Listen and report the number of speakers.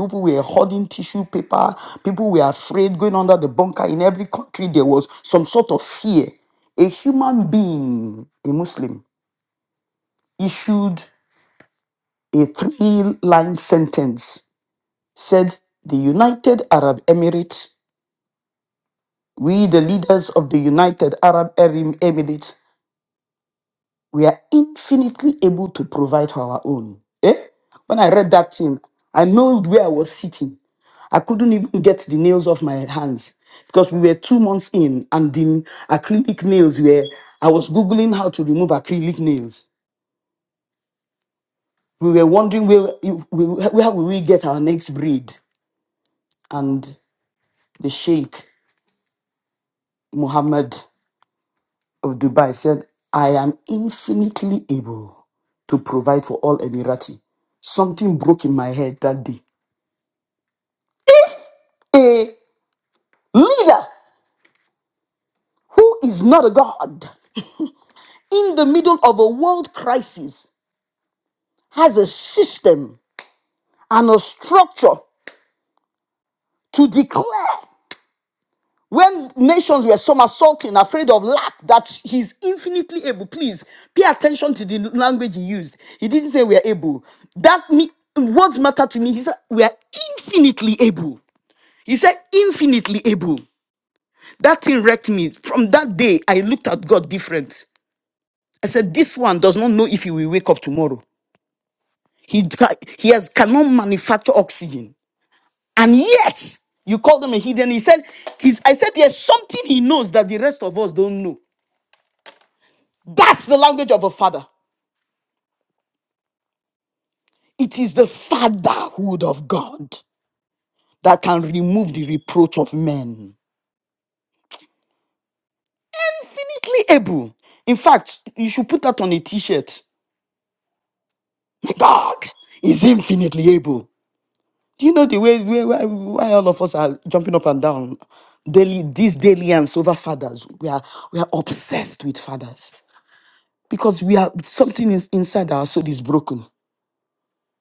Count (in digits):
1